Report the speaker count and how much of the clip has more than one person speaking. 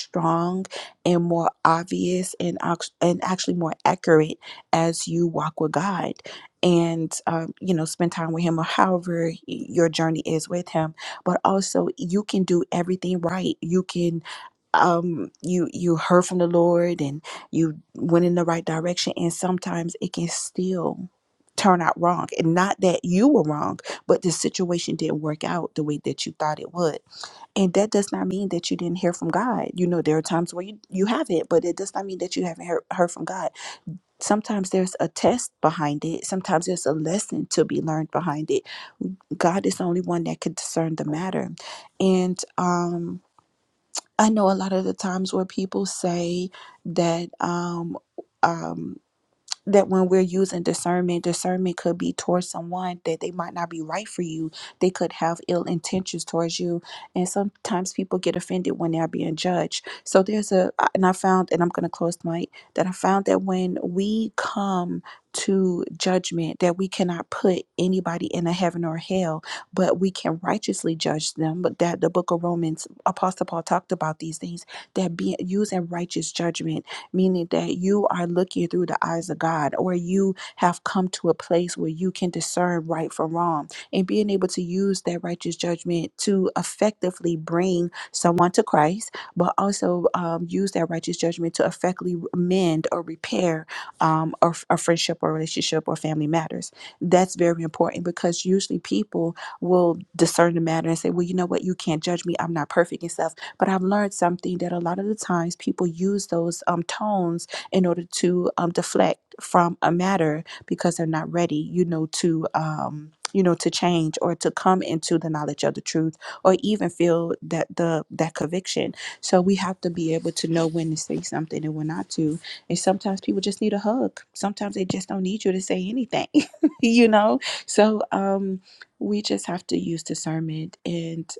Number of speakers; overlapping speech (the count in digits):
1, no overlap